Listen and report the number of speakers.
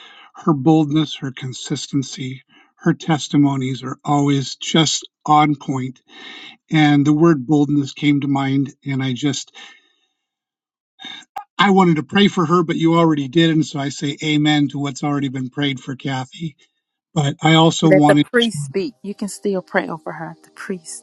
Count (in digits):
2